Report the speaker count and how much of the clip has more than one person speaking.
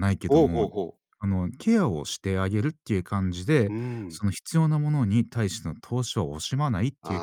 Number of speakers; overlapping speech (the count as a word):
two, about 9%